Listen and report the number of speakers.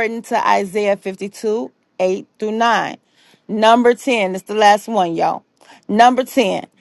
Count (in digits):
1